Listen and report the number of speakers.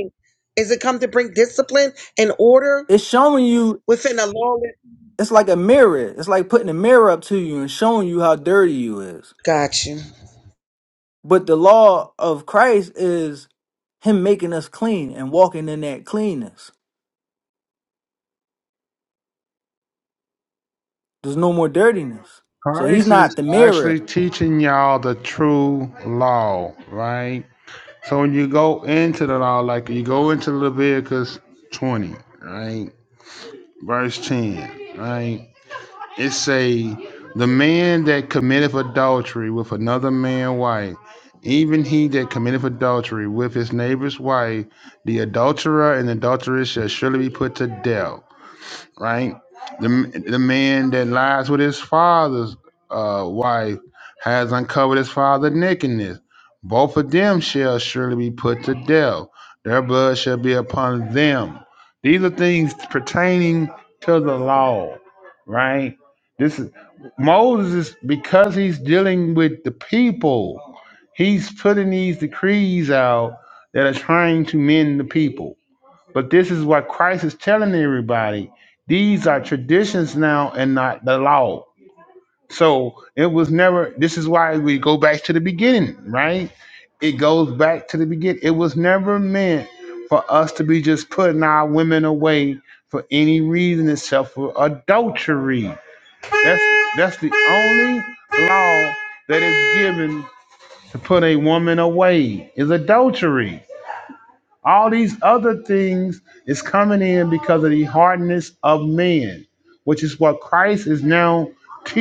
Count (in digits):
3